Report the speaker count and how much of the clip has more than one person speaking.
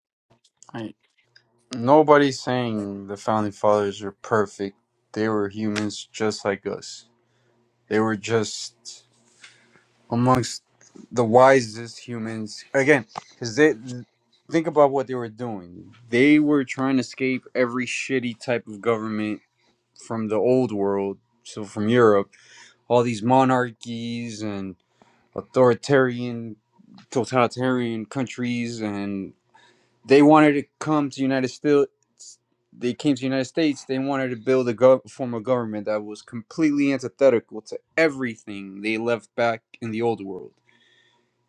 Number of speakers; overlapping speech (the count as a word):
one, no overlap